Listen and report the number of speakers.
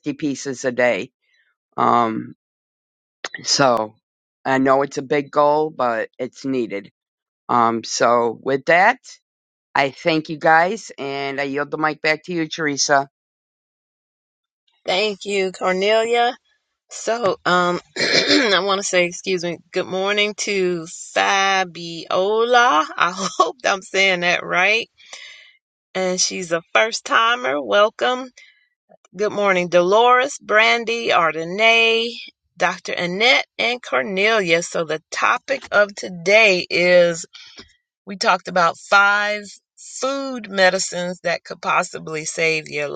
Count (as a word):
two